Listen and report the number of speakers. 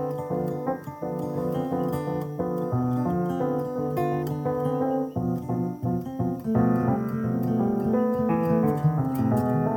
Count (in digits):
0